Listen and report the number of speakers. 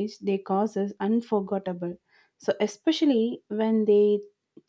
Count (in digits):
1